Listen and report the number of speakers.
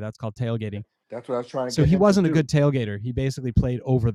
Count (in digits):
2